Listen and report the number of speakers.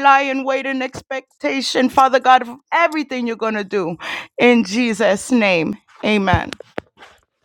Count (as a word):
one